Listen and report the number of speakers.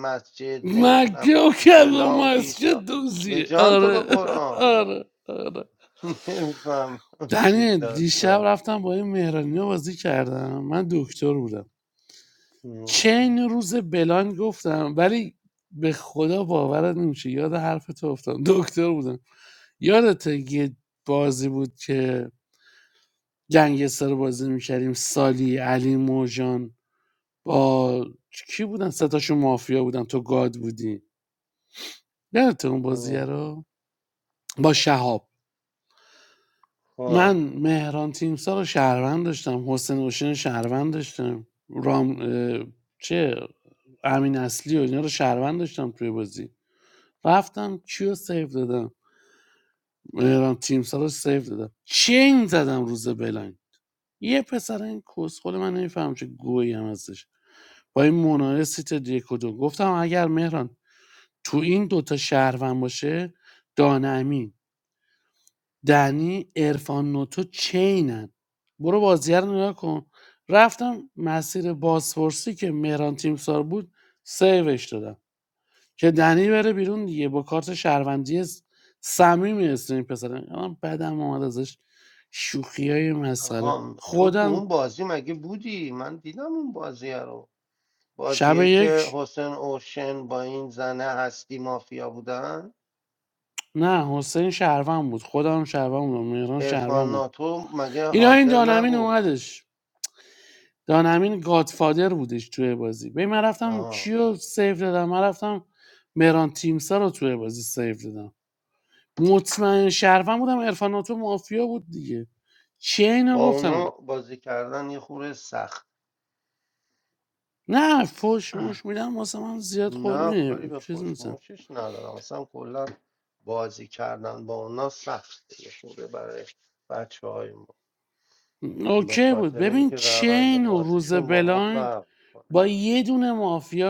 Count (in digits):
2